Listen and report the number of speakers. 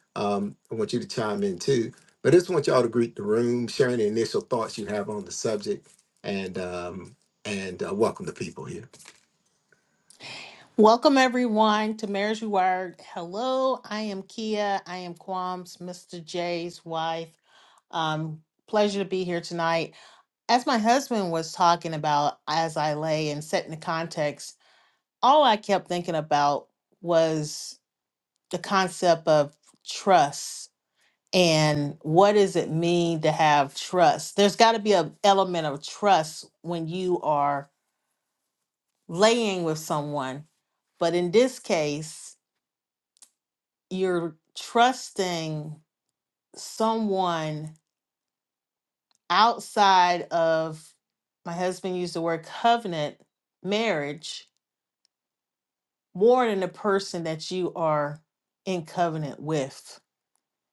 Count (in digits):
2